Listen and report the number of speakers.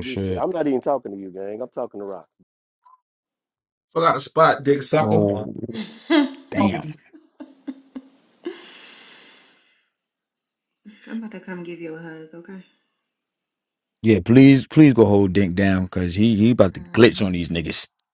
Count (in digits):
4